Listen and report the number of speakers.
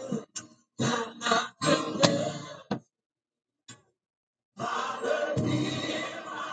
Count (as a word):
zero